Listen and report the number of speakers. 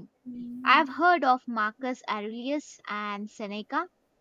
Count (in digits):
1